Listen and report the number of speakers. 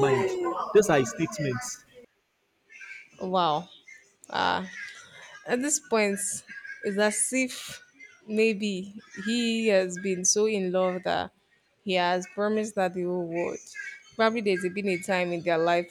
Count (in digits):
2